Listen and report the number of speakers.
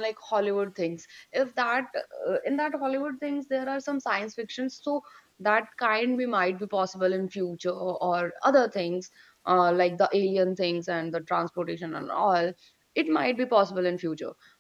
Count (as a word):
one